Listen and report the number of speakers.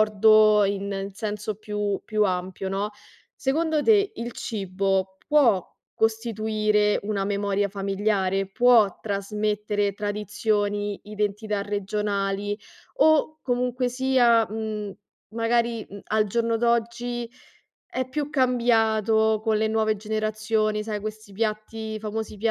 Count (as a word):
one